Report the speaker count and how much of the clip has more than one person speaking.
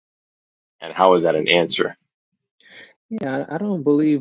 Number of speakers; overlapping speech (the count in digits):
2, no overlap